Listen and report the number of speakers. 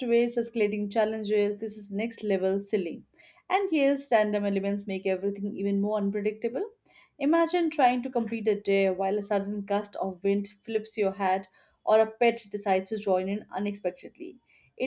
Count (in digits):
1